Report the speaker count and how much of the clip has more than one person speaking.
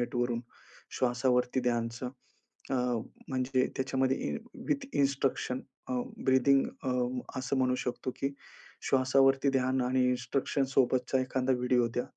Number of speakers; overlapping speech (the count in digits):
1, no overlap